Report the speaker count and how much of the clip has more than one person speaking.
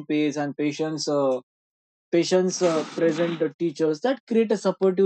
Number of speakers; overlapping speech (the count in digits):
1, no overlap